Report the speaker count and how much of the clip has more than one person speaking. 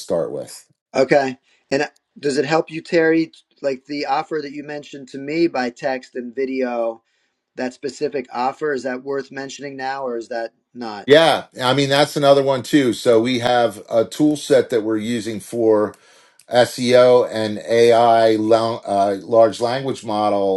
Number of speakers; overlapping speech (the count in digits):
2, no overlap